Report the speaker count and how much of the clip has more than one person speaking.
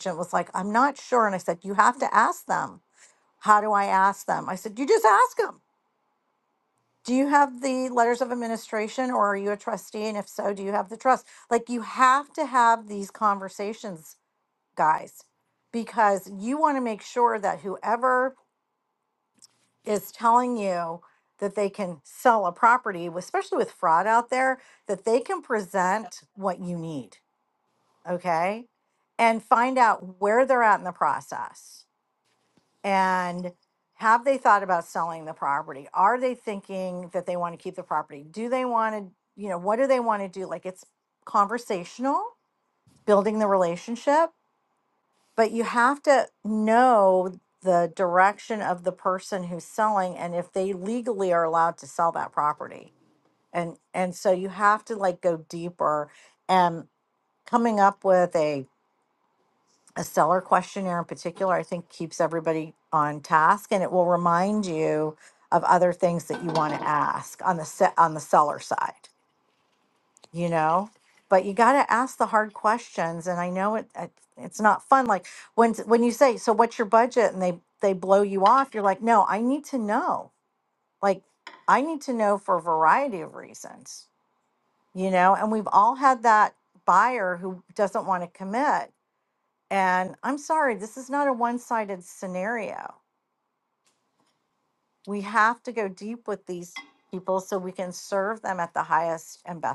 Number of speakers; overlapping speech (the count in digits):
1, no overlap